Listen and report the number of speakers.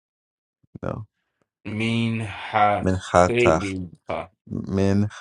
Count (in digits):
2